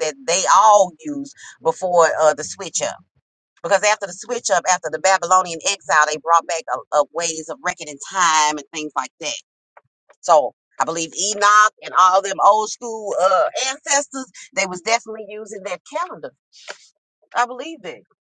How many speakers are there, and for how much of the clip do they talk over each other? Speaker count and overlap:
1, no overlap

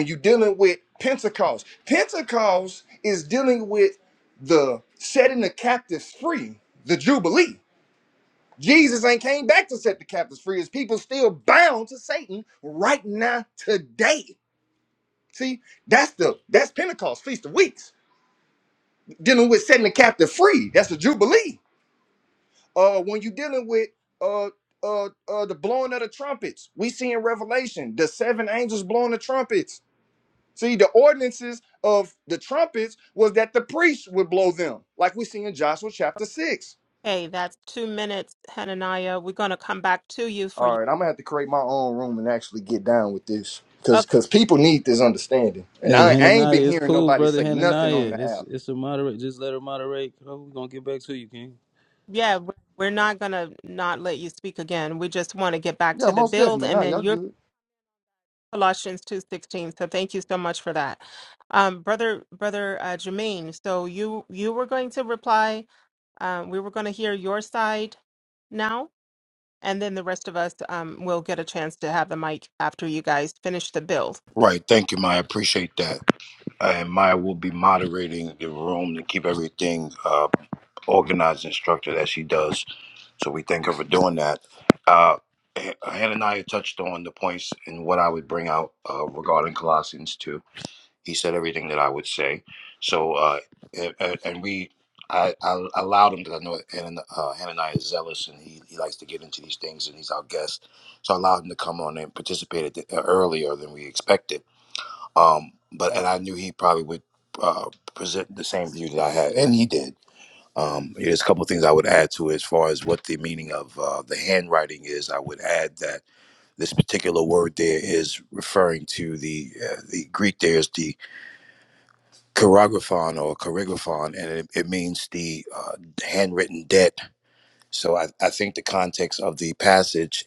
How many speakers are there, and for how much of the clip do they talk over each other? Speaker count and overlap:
4, about 3%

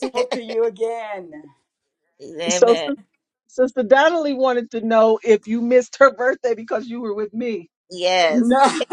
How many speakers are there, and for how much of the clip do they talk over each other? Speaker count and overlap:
3, about 7%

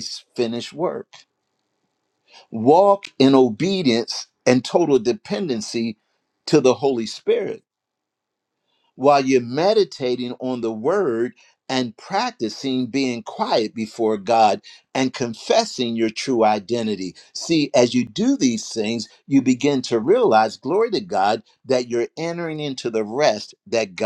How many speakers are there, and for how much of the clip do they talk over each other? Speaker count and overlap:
1, no overlap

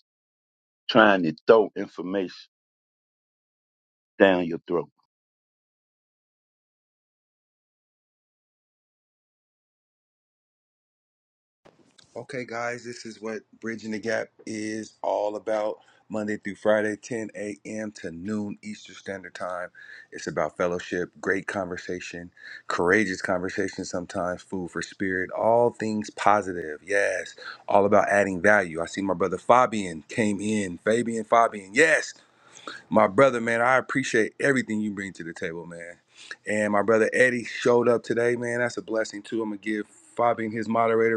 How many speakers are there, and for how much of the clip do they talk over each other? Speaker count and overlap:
2, no overlap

